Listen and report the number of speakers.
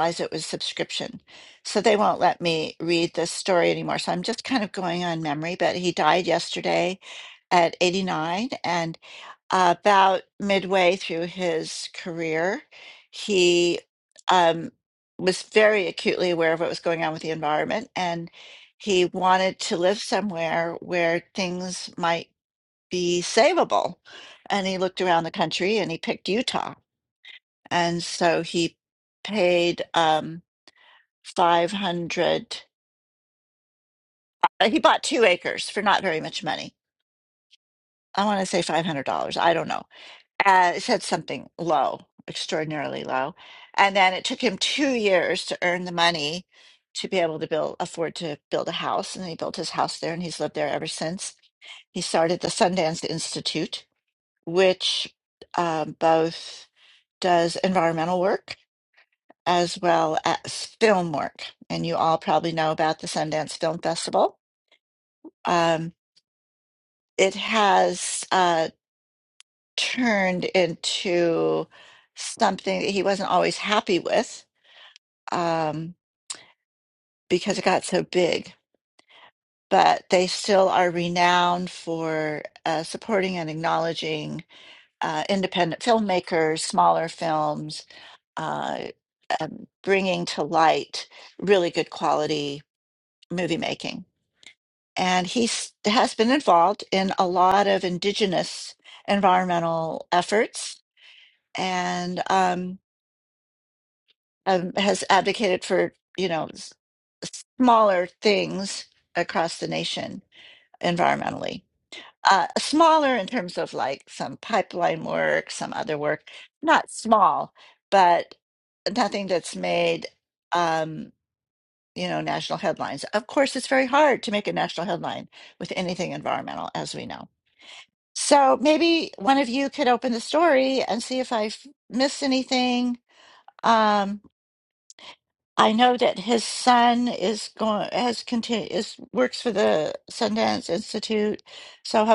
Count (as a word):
one